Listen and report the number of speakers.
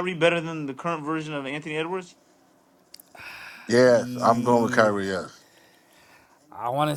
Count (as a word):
three